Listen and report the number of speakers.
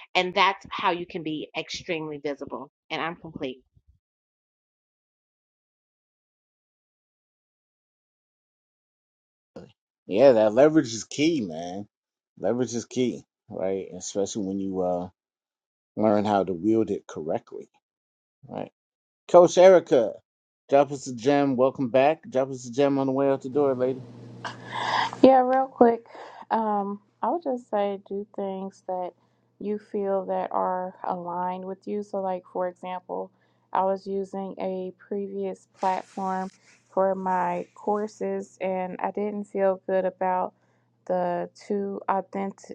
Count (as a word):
three